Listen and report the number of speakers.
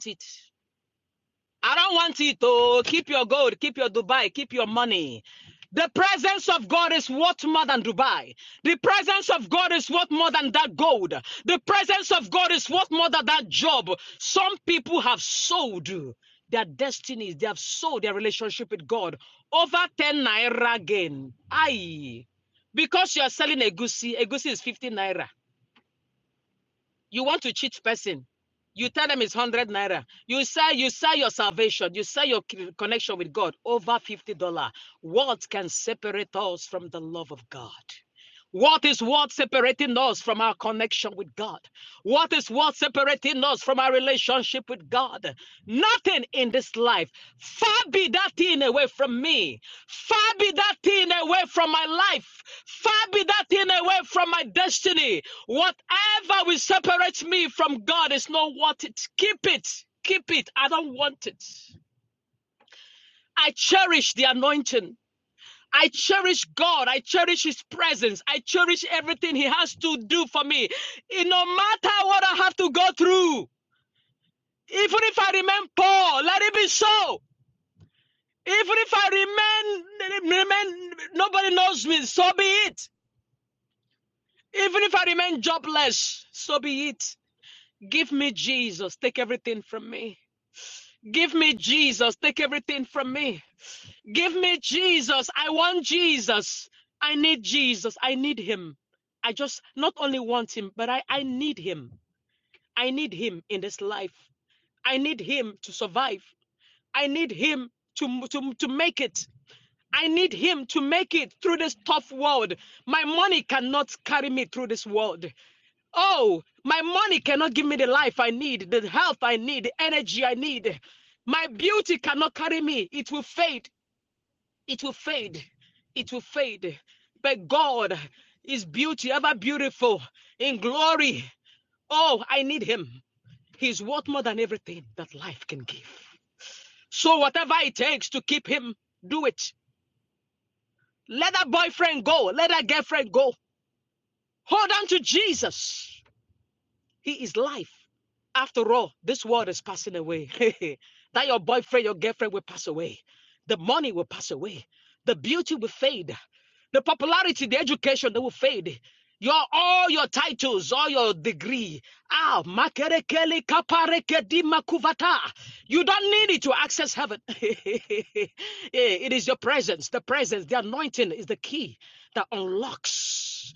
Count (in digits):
1